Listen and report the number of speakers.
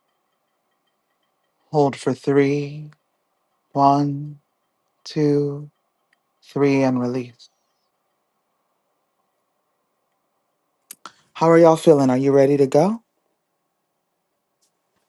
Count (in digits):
1